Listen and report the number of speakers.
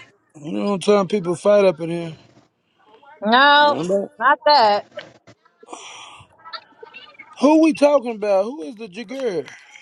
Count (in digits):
2